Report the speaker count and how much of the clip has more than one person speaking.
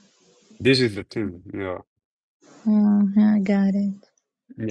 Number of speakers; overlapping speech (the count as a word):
two, no overlap